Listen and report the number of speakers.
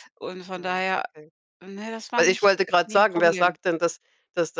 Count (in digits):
2